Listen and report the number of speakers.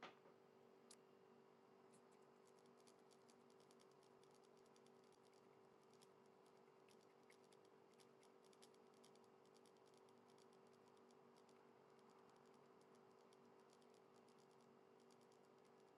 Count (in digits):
0